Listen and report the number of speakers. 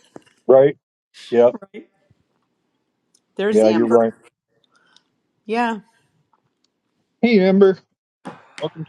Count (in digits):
2